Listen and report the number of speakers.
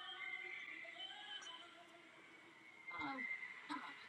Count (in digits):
0